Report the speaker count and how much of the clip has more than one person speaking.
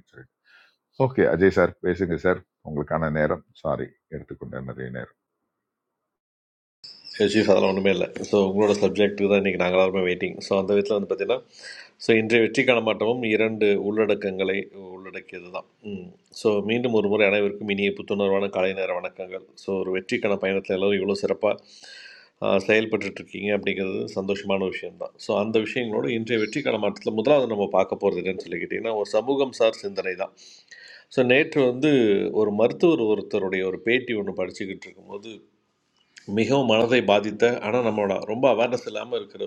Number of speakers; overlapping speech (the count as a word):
two, no overlap